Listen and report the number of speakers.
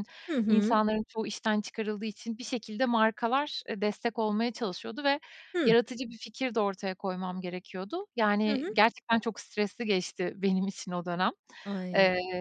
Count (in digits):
2